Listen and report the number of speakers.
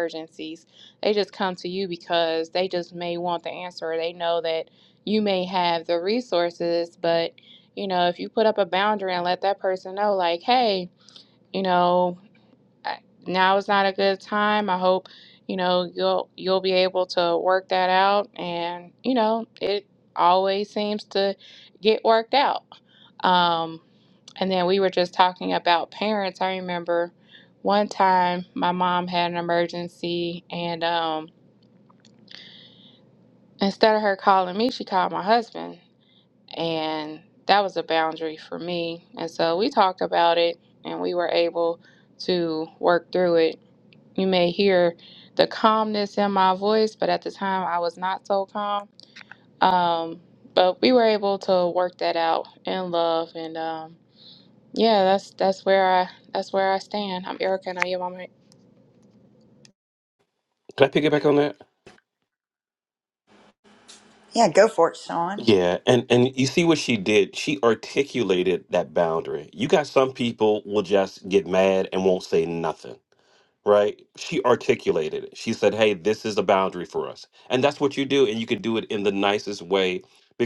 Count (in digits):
3